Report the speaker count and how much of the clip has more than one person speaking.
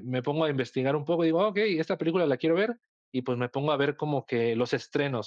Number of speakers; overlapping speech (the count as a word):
one, no overlap